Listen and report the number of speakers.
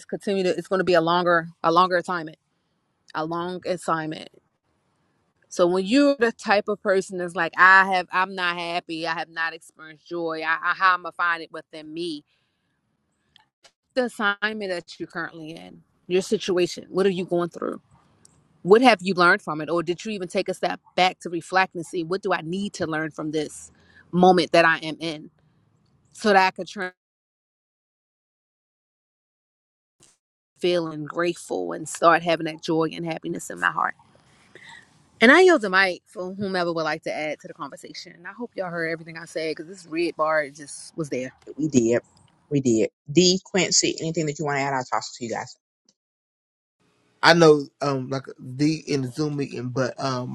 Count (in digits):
3